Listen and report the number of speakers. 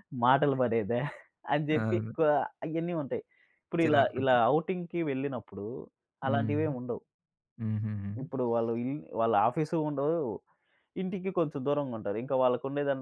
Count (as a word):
two